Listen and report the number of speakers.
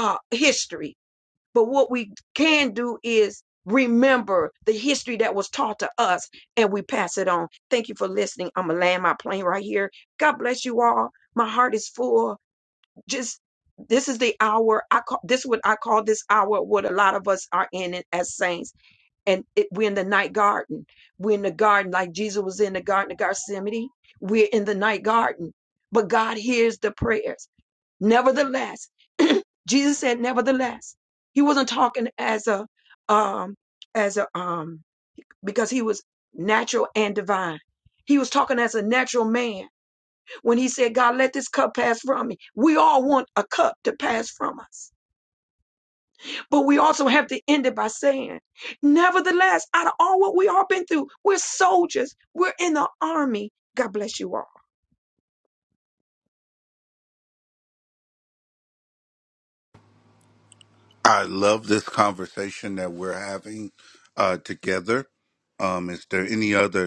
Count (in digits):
2